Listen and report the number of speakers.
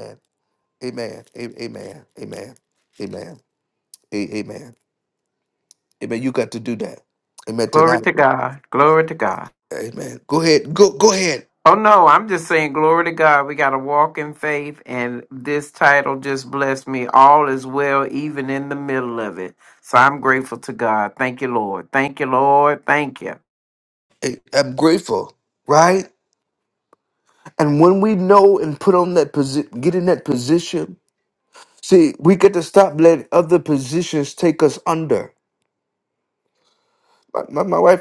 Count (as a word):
two